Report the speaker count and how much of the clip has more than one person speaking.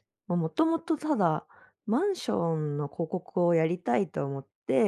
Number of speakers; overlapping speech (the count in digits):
1, no overlap